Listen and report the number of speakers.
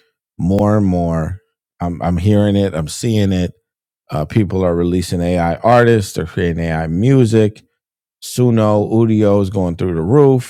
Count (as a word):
one